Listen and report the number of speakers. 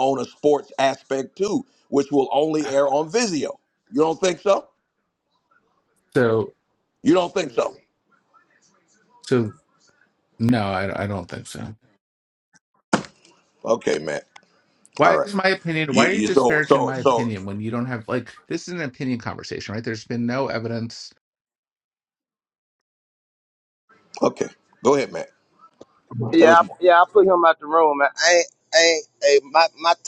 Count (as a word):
three